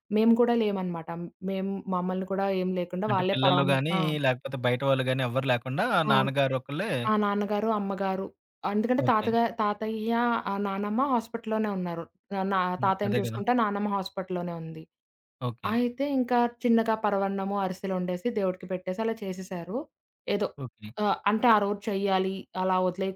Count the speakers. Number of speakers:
two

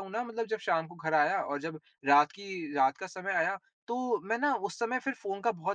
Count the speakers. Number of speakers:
one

